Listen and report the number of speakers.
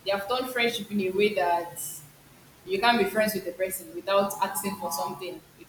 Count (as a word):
one